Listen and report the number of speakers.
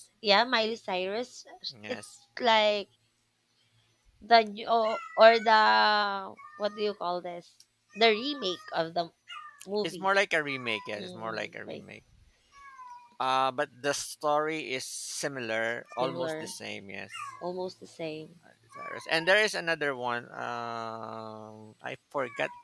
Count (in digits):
2